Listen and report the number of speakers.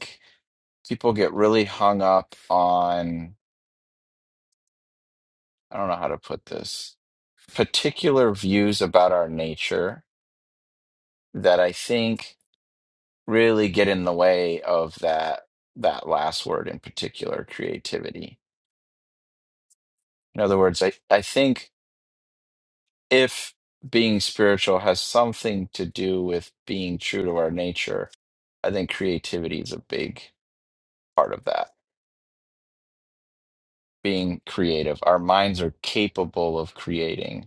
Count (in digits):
1